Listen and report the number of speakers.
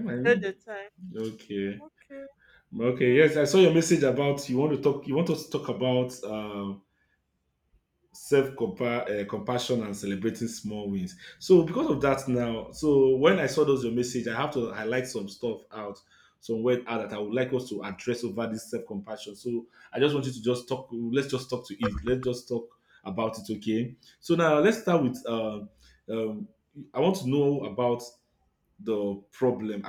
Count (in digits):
2